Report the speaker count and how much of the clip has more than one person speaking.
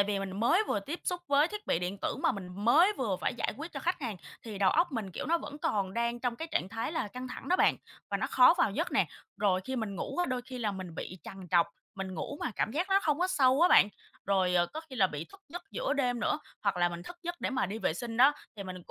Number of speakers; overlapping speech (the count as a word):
one, no overlap